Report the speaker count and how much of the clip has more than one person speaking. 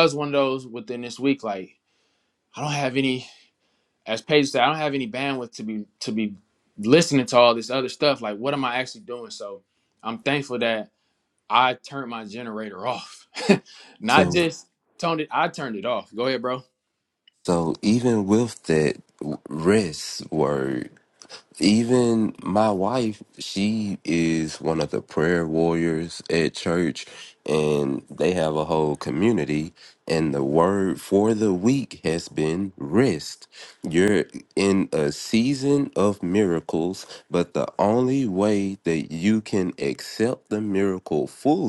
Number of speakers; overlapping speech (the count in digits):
2, about 1%